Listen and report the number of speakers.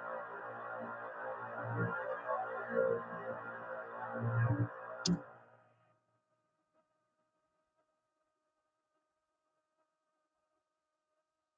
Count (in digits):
0